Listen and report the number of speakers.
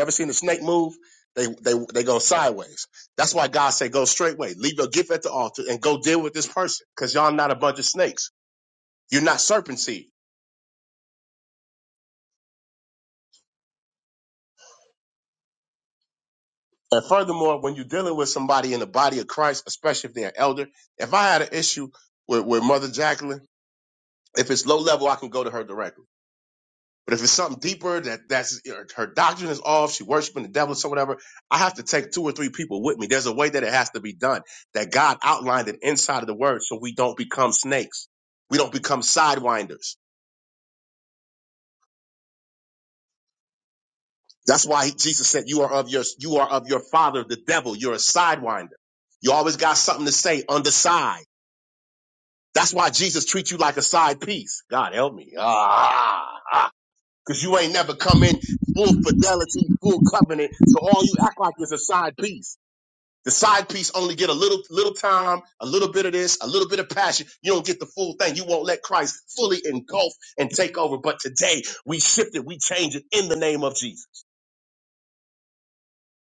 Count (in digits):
1